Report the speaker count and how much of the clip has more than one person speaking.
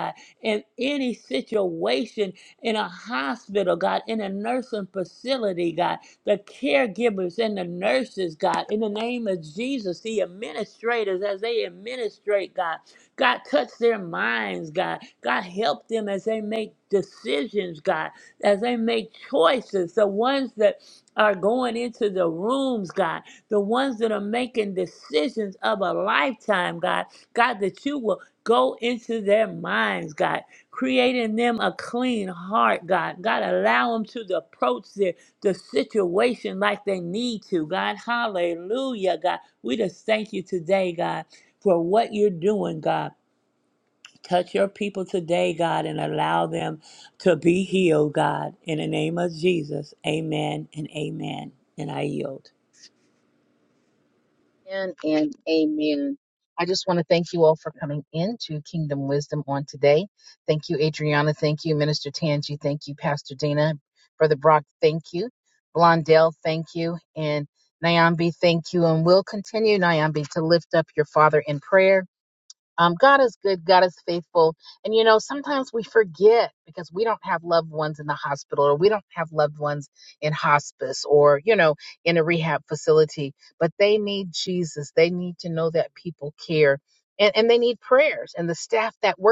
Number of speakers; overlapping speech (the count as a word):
two, no overlap